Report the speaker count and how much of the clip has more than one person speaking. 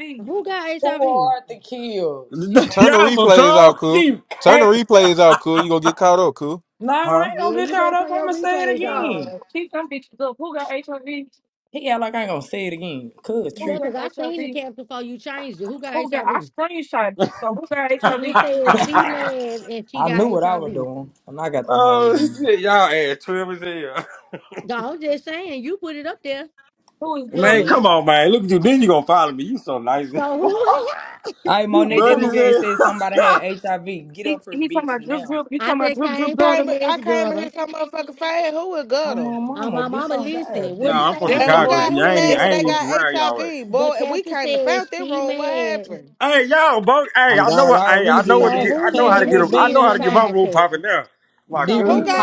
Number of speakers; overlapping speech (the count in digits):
6, about 45%